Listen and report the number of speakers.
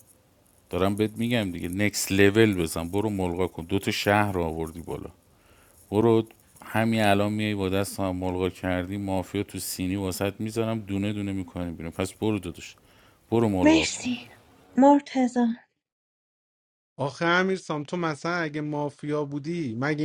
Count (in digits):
3